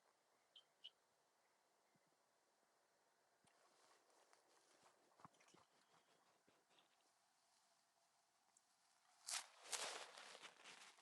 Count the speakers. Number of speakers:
0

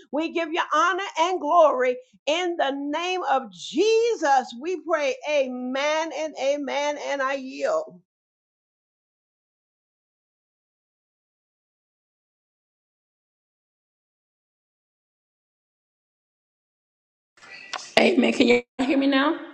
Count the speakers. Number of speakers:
2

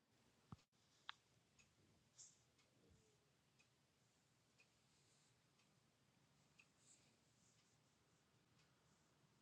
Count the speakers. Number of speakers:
0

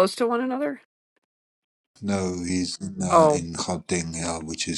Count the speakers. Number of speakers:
2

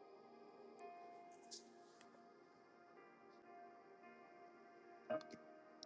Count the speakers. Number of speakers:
0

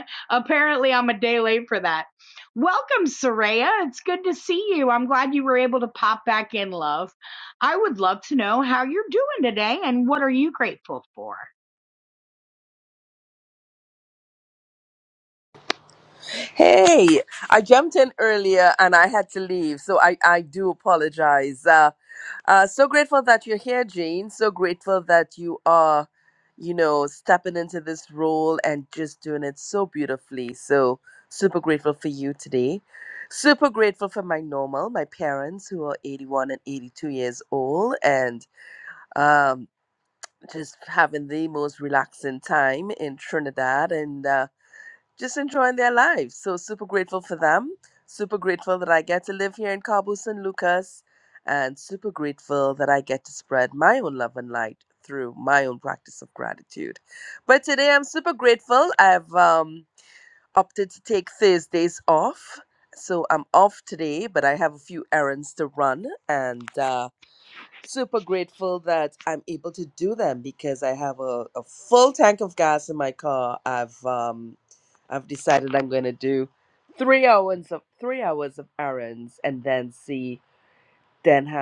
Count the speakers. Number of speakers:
2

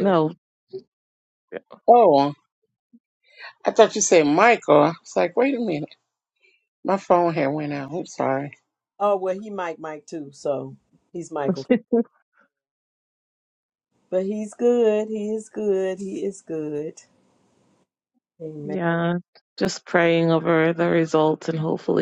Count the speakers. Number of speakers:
3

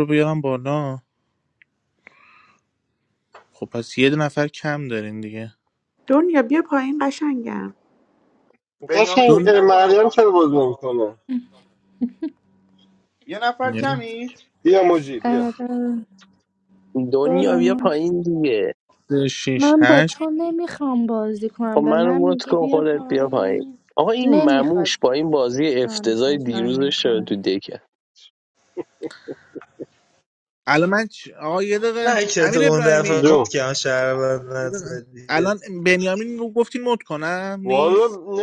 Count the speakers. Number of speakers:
7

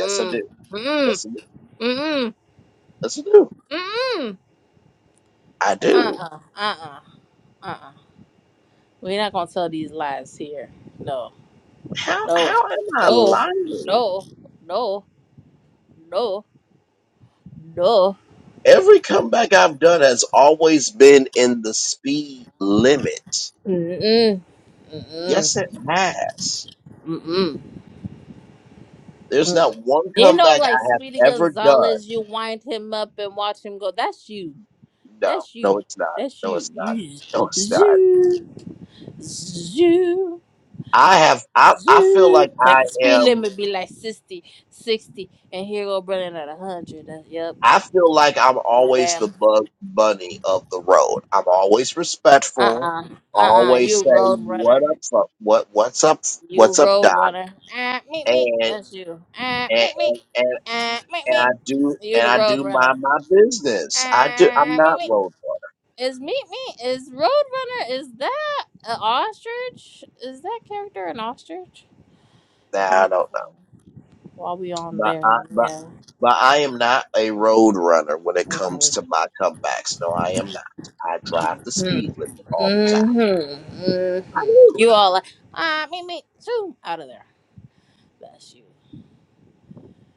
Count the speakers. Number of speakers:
2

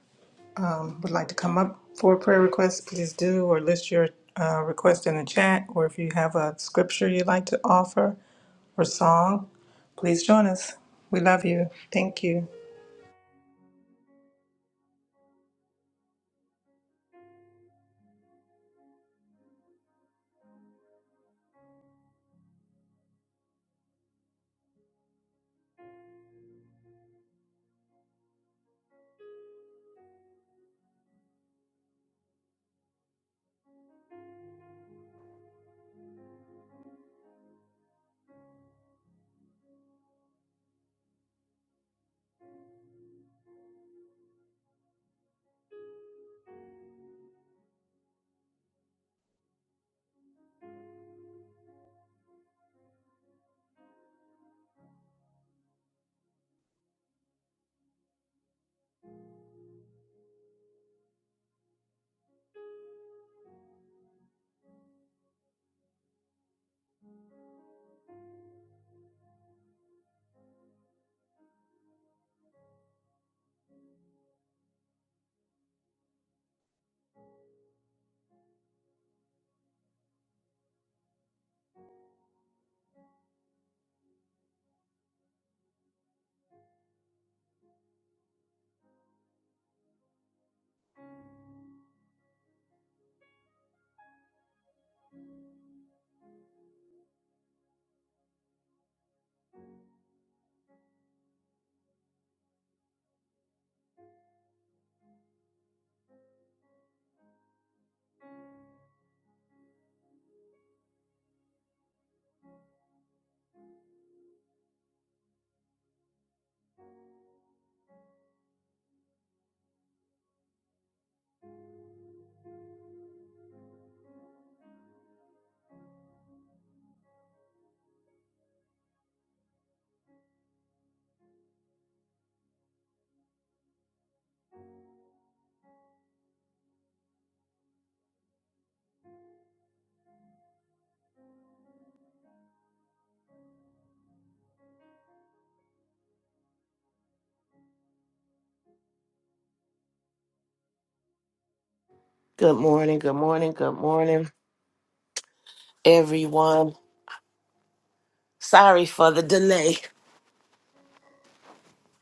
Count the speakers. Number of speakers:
2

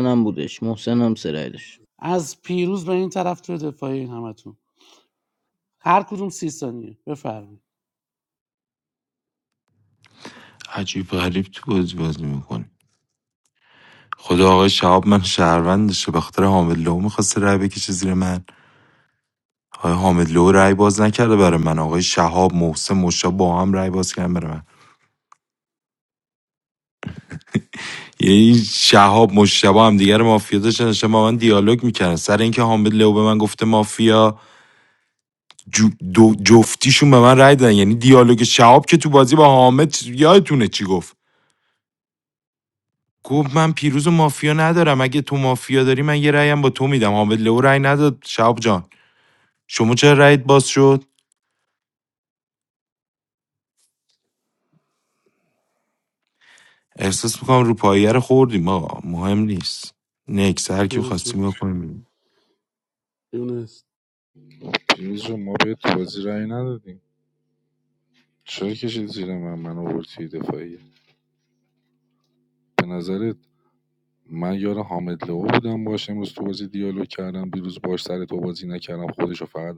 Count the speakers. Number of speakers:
4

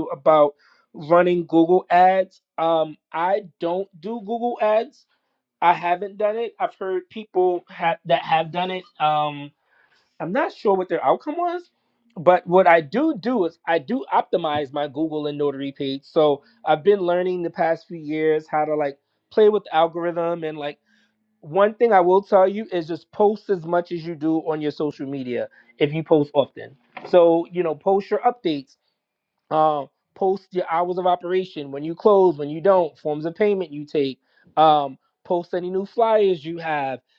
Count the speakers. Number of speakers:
1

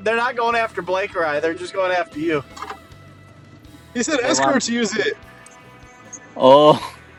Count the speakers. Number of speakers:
3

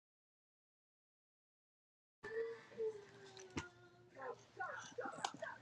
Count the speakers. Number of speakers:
0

